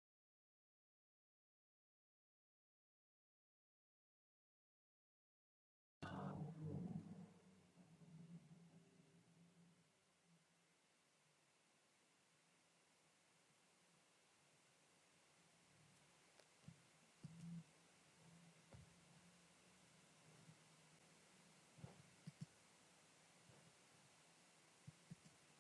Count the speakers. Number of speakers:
0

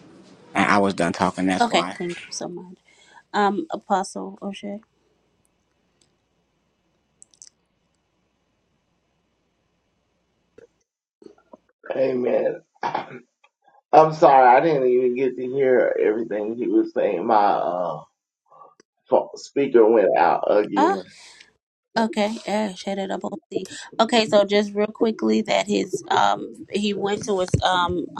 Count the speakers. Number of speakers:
3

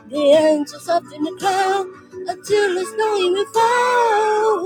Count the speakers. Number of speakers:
1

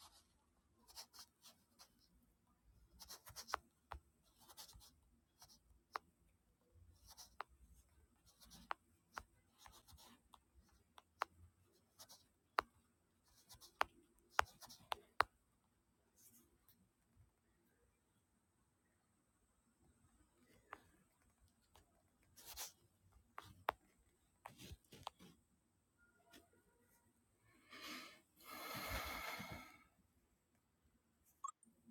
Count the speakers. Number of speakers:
0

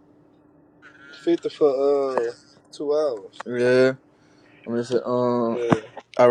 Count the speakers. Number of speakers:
2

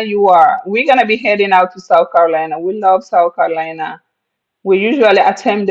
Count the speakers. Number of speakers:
1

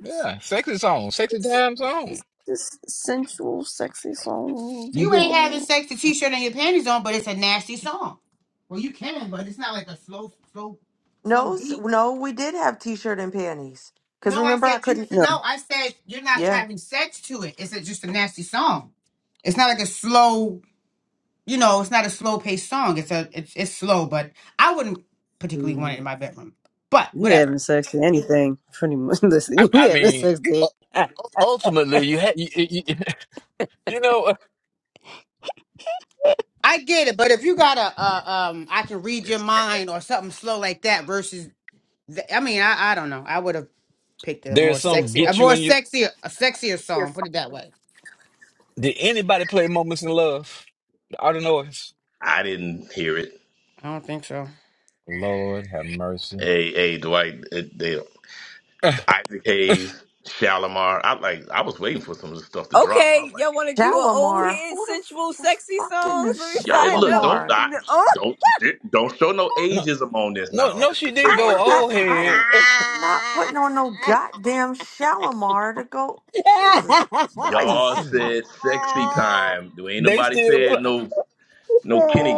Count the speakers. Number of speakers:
5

